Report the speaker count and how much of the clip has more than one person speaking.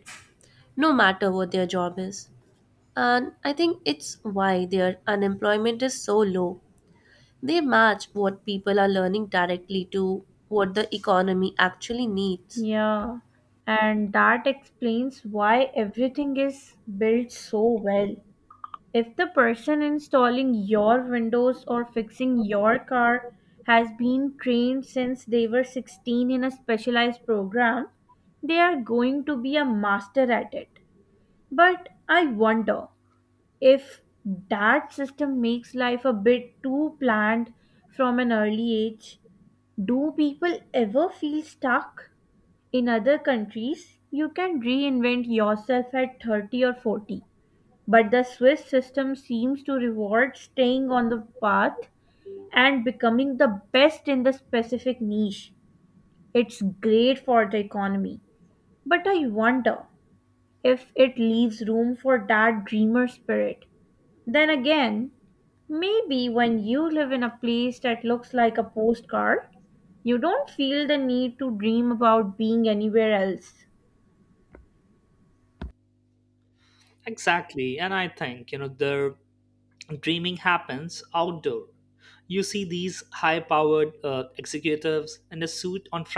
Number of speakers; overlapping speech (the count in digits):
3, no overlap